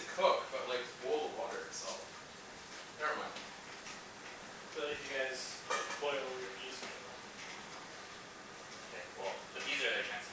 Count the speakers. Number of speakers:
3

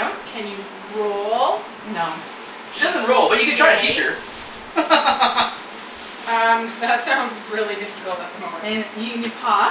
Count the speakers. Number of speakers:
3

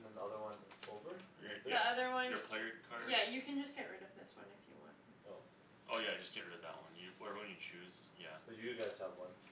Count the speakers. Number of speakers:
3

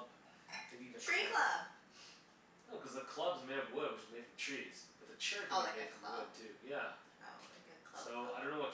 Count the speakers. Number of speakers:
2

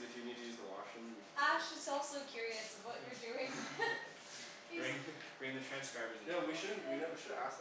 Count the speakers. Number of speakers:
3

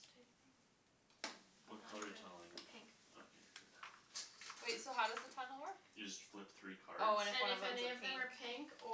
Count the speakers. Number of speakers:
3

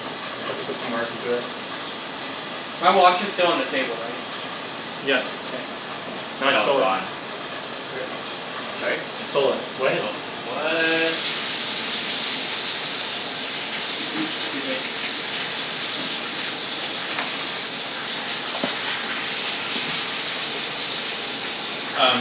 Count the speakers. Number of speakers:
3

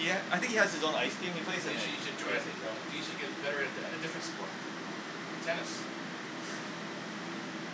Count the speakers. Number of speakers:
2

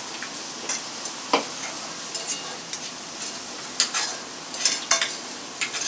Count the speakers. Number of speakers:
0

